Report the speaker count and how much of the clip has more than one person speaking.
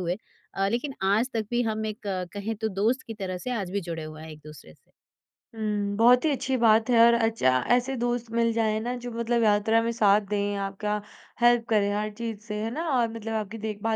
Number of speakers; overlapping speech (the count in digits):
2, no overlap